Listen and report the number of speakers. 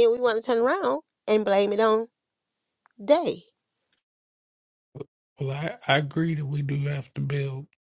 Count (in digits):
2